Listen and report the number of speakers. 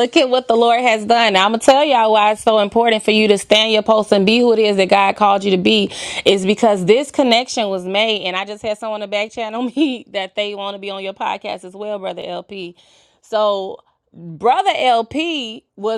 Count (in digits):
1